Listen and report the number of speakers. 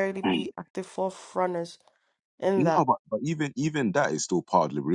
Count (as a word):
two